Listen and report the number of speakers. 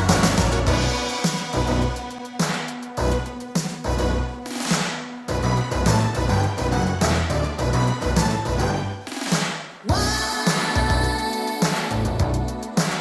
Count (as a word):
zero